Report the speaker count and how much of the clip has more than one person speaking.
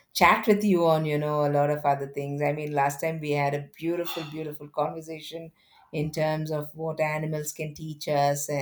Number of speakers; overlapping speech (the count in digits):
1, no overlap